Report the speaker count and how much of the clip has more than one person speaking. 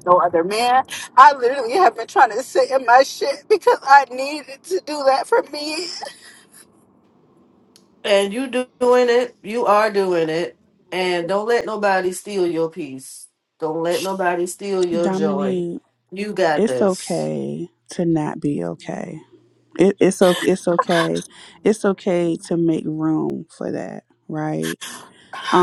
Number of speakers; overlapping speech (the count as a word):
three, about 4%